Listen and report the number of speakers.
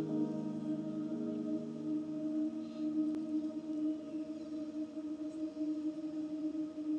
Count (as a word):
zero